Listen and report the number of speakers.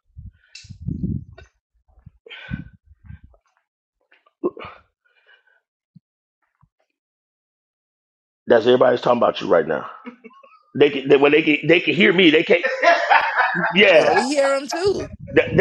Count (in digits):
2